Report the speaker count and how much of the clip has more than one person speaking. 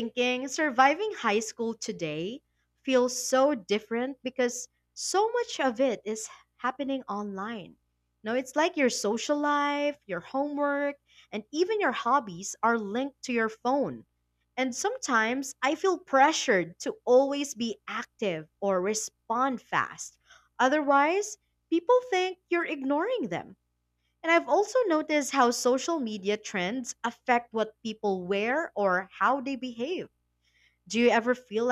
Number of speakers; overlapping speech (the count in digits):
1, no overlap